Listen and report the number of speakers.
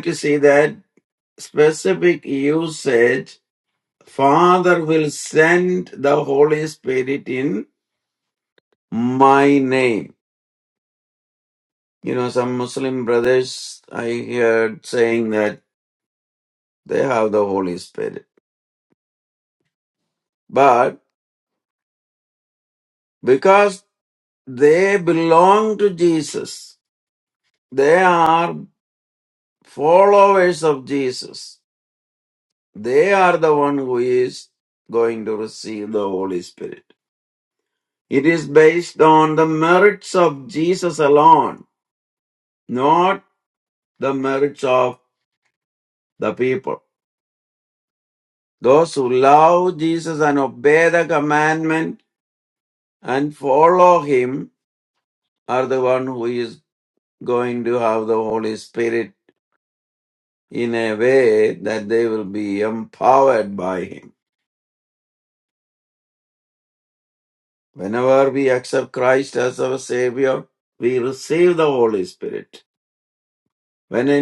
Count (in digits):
1